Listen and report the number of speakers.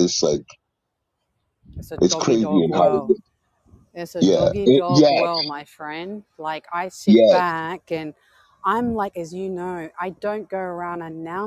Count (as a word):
two